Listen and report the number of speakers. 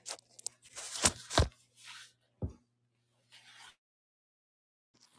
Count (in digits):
0